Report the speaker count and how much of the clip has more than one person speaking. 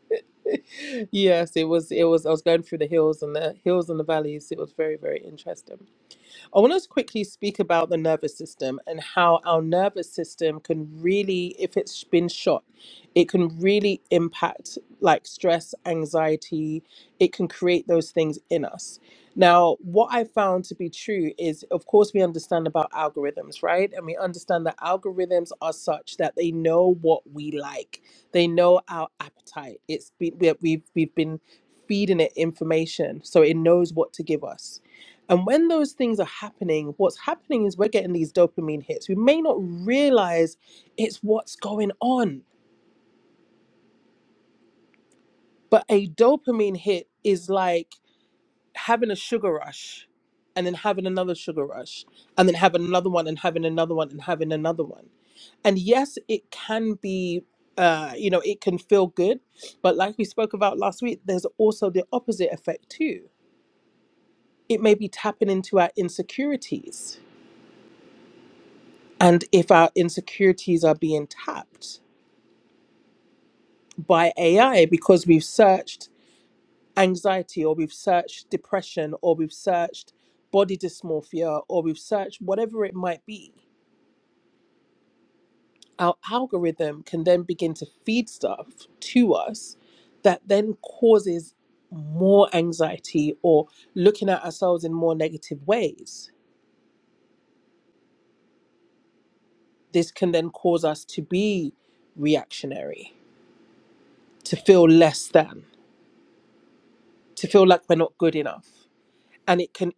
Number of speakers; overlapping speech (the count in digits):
1, no overlap